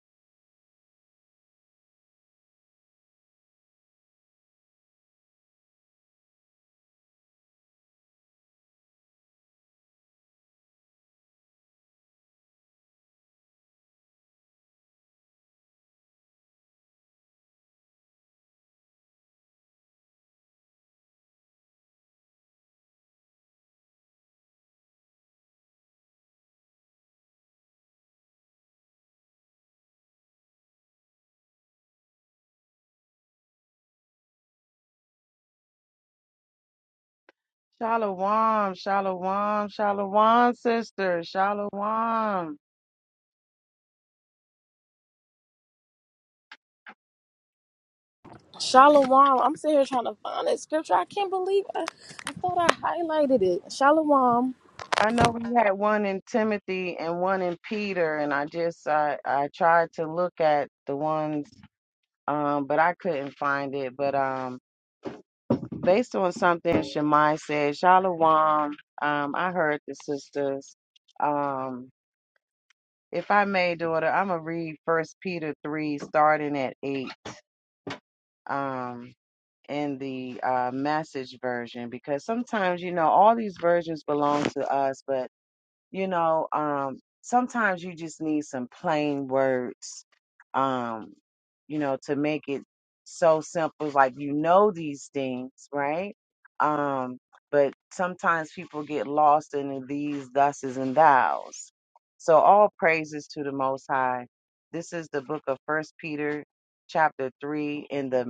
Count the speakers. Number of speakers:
two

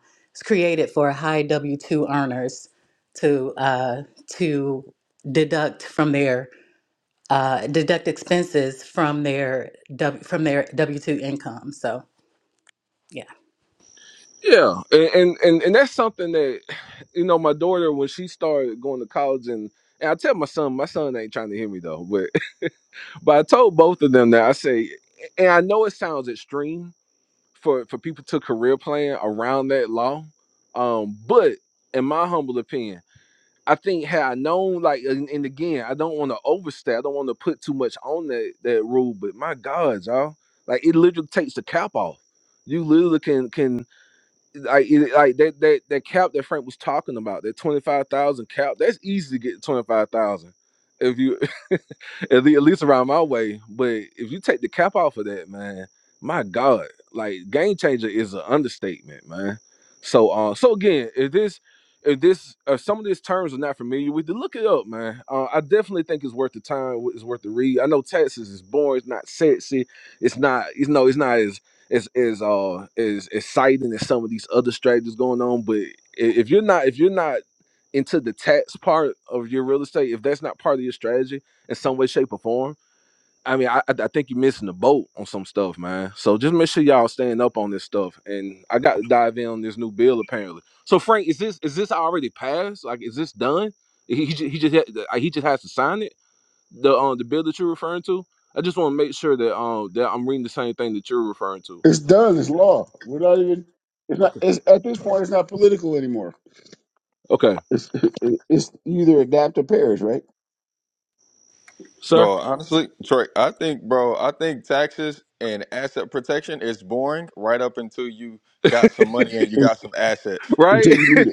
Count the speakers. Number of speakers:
four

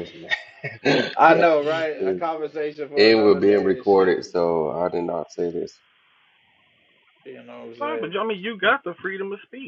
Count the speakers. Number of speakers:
three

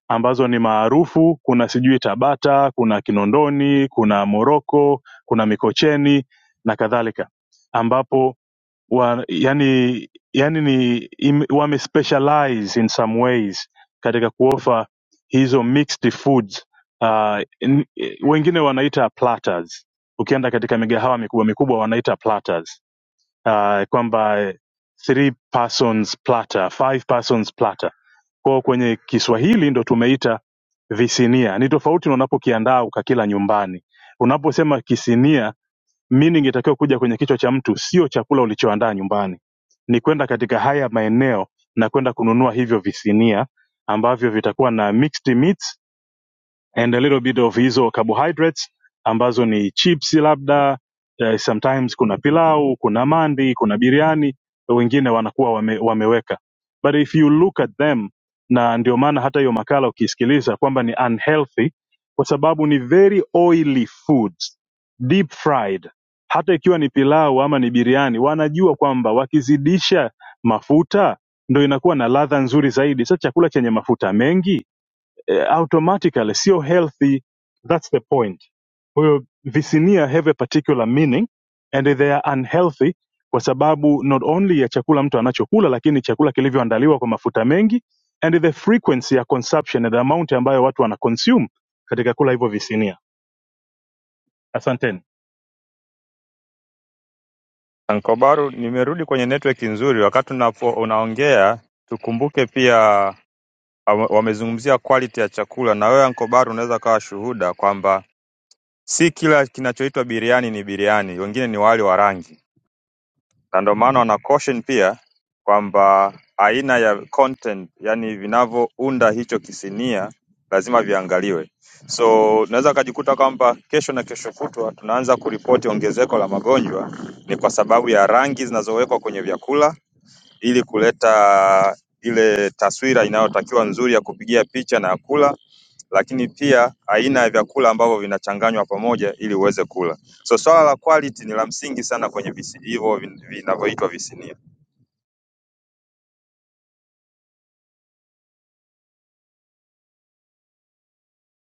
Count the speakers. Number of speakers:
two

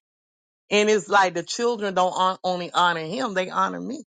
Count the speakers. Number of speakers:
one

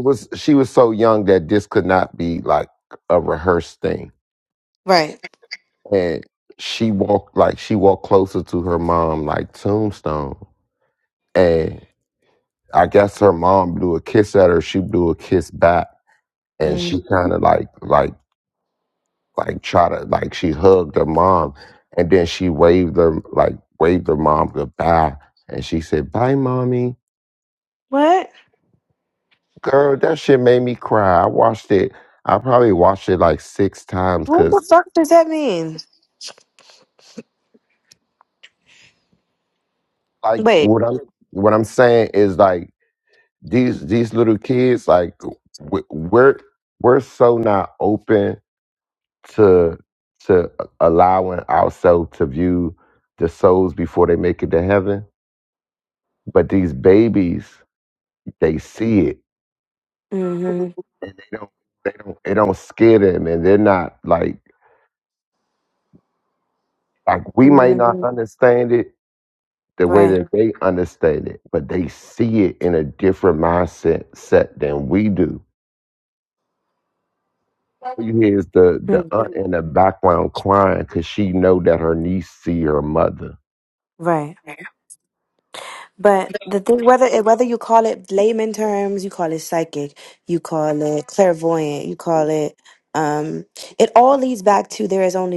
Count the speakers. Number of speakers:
two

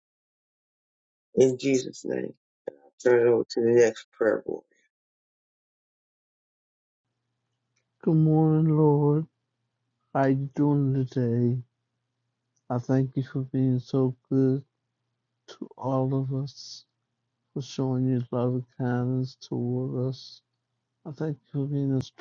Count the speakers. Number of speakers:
two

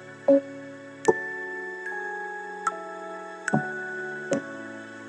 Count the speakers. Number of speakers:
zero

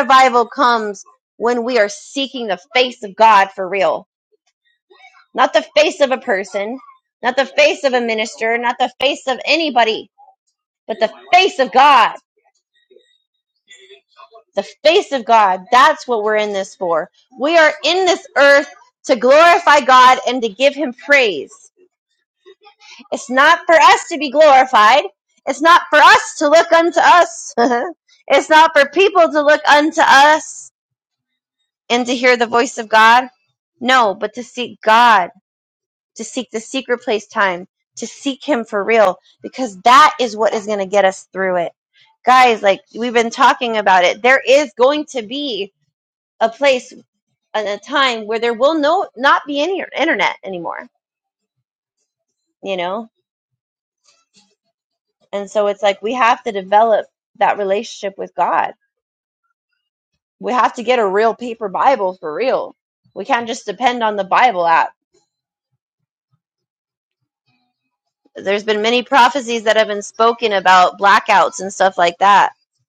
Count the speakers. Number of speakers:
one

